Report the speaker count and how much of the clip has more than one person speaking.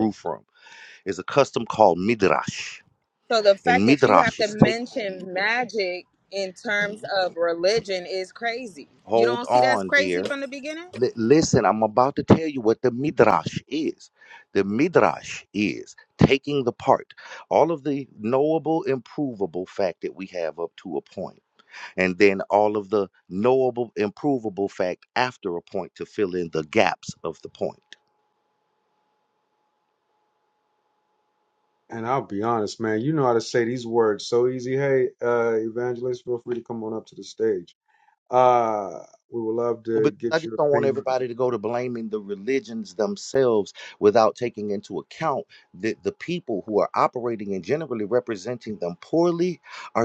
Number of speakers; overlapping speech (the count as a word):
three, about 7%